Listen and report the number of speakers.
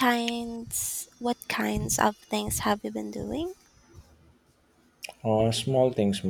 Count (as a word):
two